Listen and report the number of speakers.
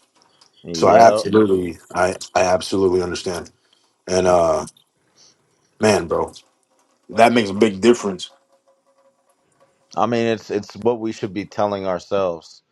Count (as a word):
two